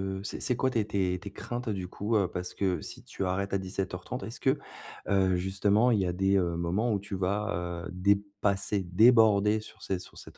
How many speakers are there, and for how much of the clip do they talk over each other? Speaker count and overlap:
1, no overlap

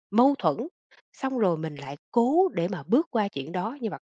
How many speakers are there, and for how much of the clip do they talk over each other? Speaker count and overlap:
1, no overlap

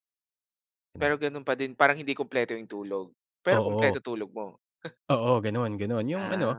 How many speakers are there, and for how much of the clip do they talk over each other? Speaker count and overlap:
2, about 14%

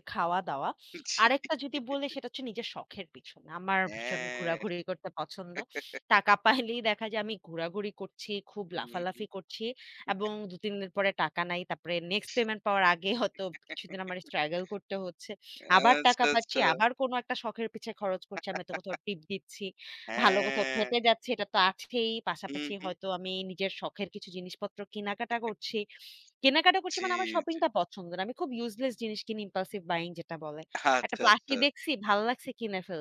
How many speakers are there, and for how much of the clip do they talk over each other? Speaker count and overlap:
2, about 12%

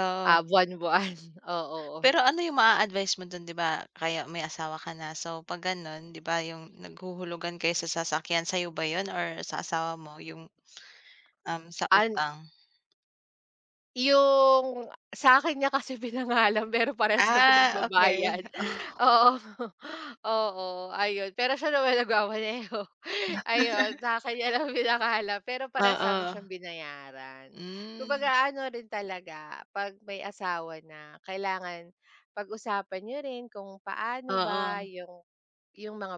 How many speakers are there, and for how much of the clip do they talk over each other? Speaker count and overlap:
2, about 9%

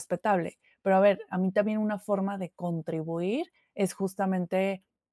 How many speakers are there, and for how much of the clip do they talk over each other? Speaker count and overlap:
1, no overlap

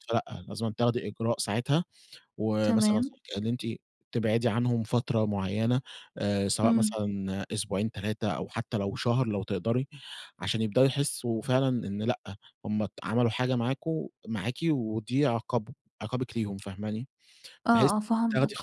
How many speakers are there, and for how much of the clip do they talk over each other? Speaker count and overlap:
2, about 7%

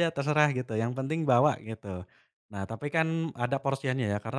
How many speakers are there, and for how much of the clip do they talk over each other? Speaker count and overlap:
1, no overlap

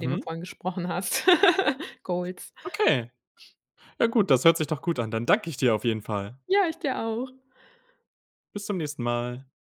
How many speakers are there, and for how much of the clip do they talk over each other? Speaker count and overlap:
2, about 3%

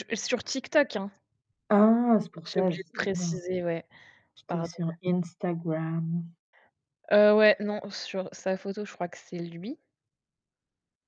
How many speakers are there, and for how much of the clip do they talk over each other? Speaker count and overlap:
2, about 7%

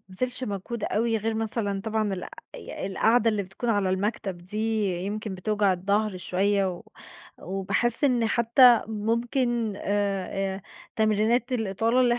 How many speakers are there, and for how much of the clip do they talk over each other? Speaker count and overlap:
1, no overlap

